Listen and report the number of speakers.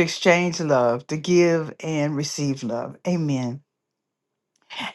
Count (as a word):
one